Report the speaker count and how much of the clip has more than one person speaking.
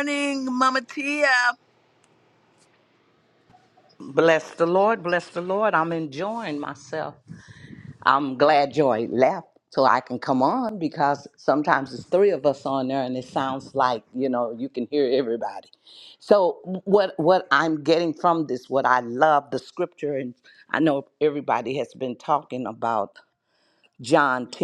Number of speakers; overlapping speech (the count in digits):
2, no overlap